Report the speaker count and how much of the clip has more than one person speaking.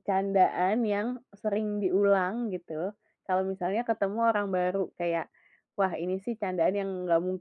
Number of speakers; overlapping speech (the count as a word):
one, no overlap